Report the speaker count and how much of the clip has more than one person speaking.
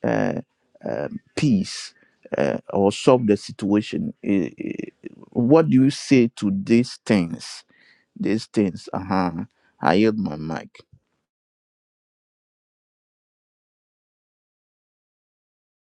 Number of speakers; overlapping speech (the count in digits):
1, no overlap